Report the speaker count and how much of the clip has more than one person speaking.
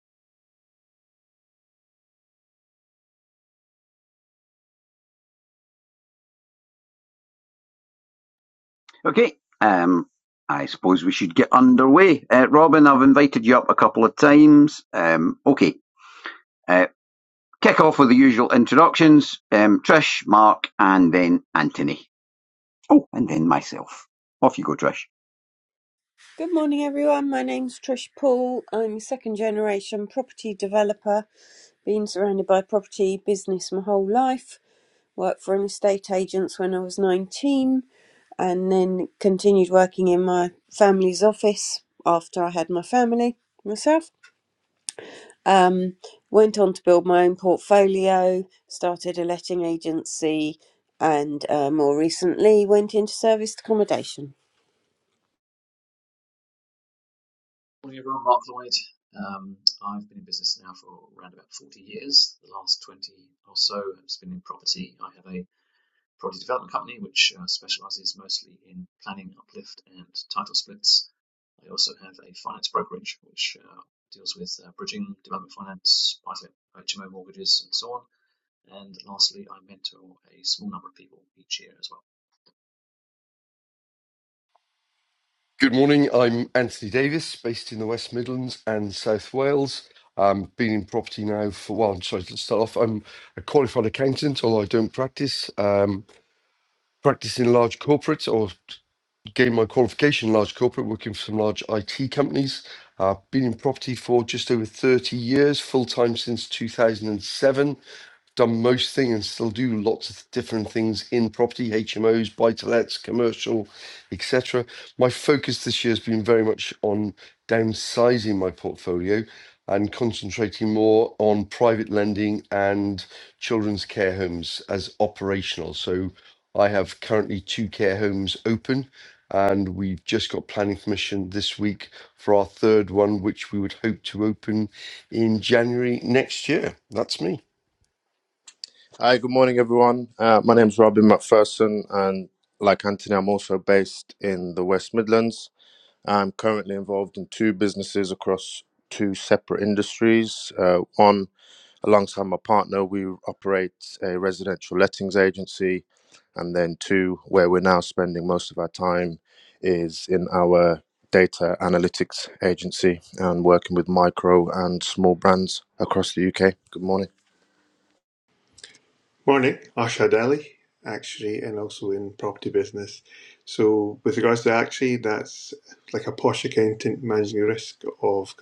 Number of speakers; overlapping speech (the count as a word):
six, no overlap